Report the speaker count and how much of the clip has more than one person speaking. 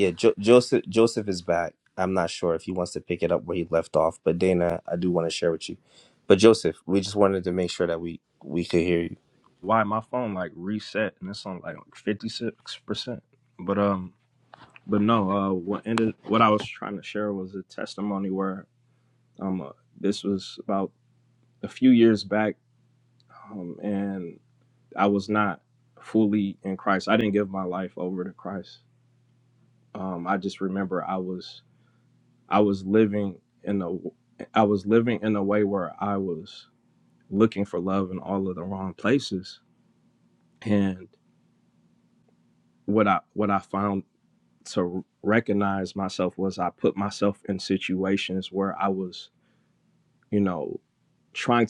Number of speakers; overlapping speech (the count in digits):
2, no overlap